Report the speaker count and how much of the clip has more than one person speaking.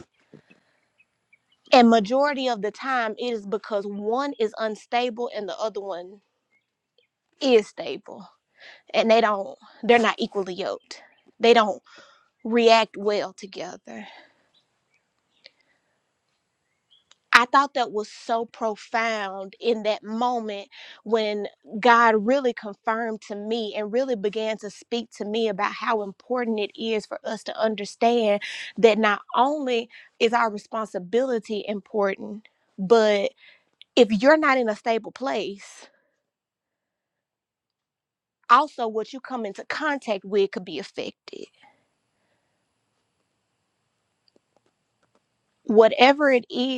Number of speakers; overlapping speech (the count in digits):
1, no overlap